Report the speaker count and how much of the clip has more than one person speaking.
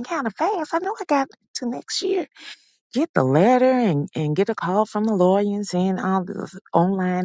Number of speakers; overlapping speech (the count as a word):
one, no overlap